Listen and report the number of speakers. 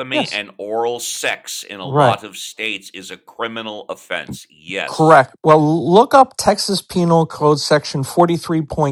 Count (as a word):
two